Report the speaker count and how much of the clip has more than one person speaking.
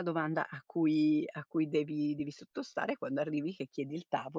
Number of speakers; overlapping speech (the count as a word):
one, no overlap